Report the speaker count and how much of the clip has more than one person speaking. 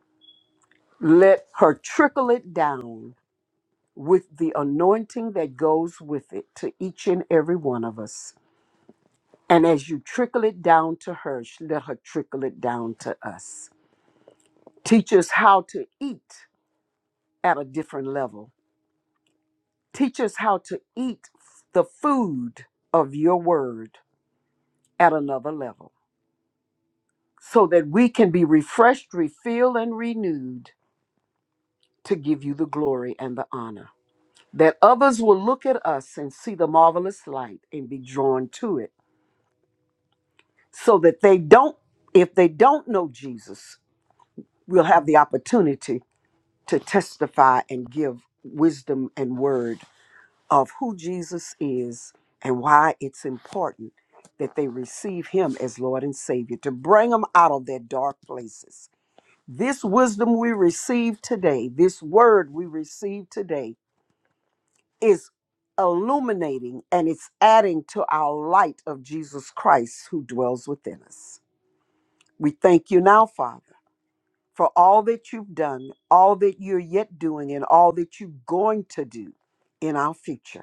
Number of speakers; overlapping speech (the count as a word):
one, no overlap